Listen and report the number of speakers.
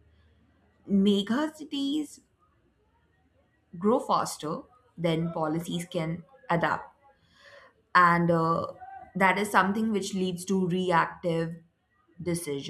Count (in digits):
1